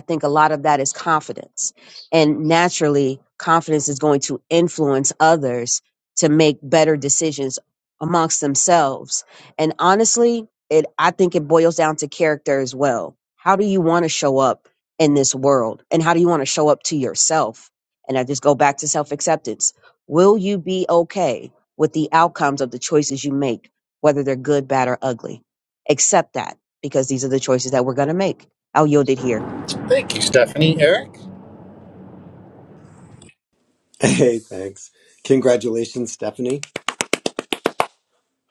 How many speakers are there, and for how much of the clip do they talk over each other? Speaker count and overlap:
3, no overlap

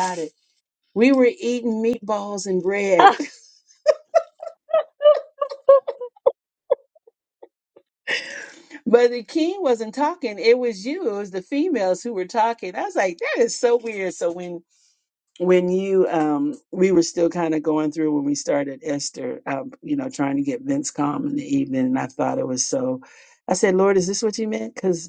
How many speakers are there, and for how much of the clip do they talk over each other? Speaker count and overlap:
1, no overlap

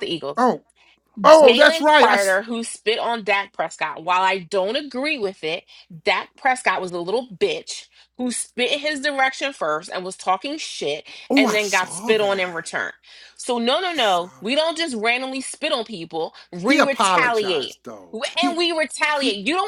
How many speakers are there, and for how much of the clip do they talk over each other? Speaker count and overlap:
2, about 23%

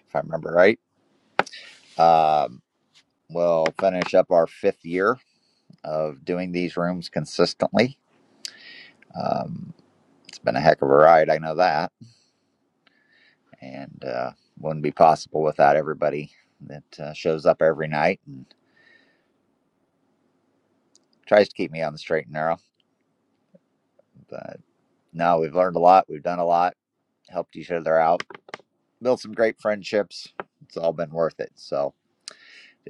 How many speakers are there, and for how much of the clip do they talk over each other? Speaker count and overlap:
1, no overlap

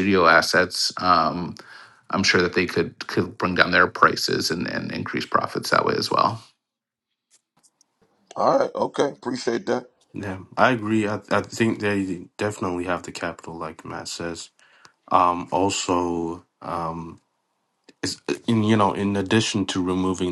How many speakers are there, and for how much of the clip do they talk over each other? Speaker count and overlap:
3, no overlap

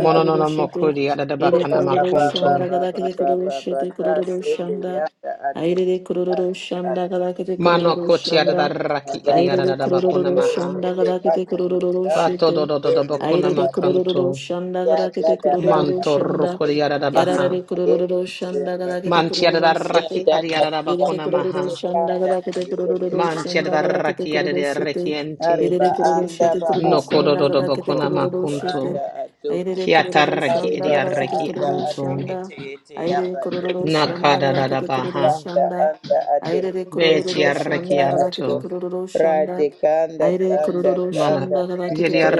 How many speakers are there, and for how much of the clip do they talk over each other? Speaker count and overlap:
3, about 81%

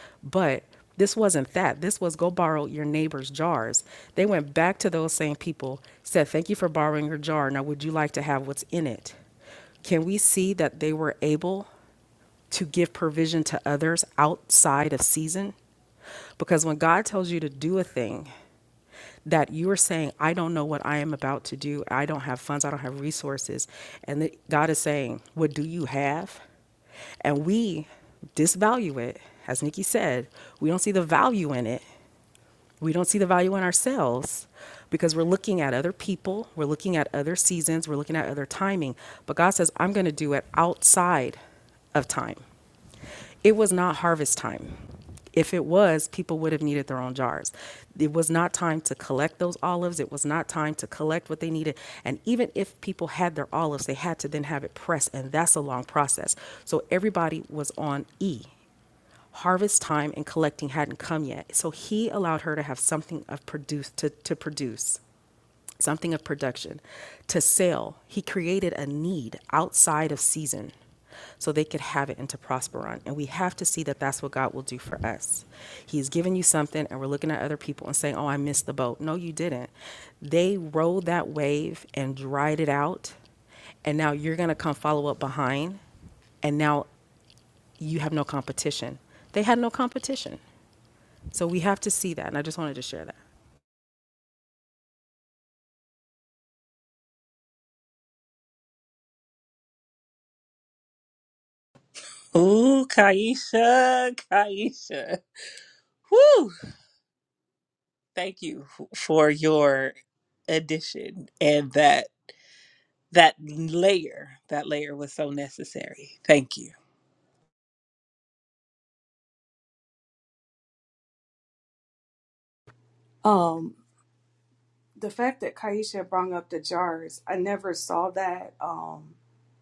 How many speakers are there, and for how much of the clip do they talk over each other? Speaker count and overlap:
3, no overlap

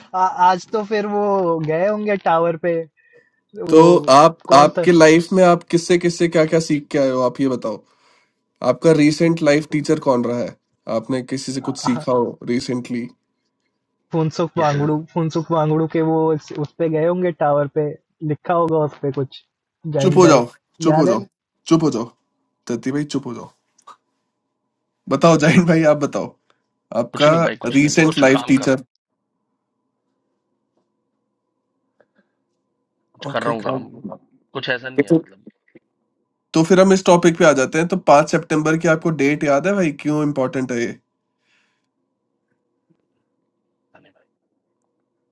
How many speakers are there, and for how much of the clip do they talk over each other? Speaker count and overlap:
3, about 9%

